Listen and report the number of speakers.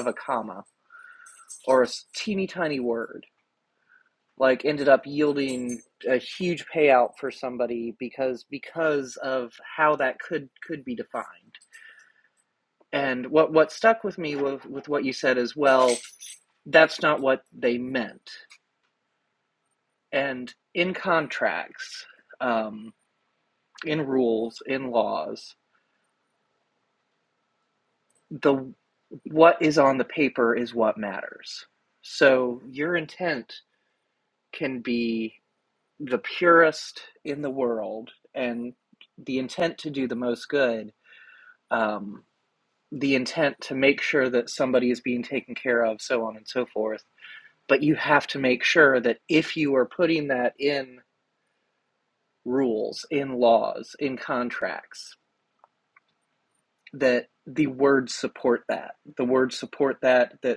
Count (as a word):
one